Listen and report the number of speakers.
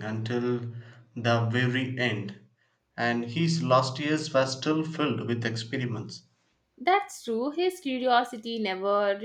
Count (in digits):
2